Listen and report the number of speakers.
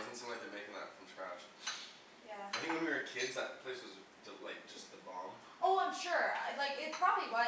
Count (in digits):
2